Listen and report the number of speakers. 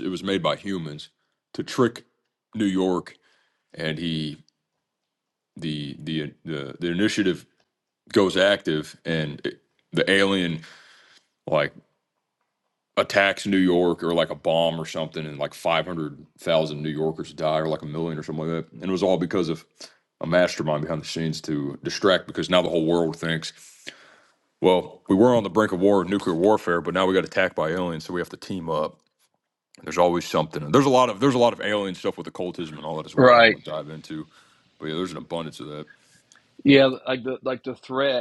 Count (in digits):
2